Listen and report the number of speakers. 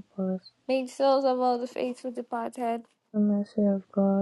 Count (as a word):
two